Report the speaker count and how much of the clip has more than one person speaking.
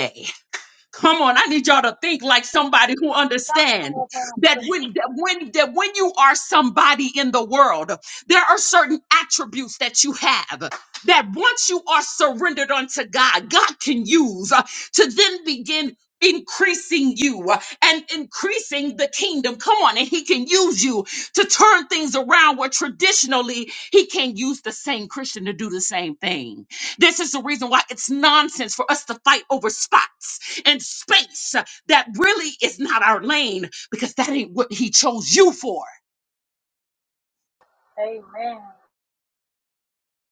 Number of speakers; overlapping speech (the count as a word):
two, about 2%